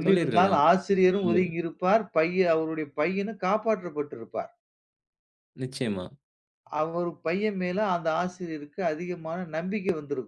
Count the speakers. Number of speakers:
2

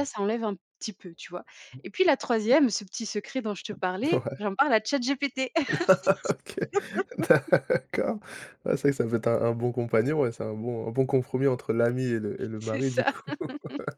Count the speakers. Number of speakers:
2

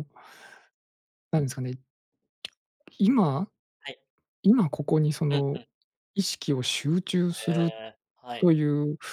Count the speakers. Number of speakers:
2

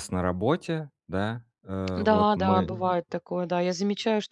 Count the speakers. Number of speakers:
2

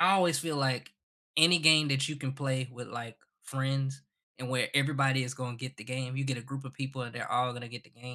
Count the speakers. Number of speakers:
1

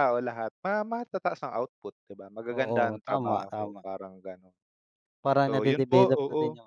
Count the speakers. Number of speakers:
2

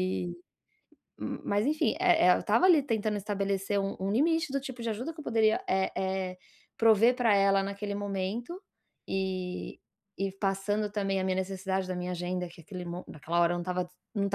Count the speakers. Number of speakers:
1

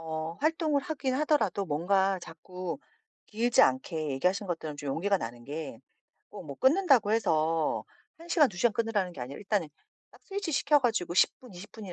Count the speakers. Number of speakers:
1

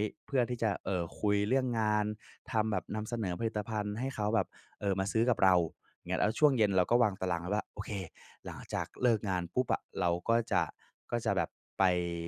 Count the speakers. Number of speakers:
1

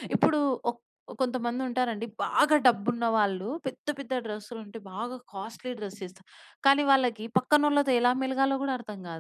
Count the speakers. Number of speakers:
1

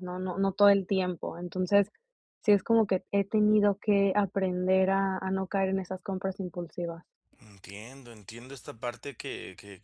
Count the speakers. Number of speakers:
2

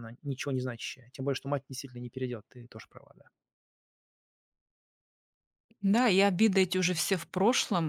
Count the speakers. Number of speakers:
2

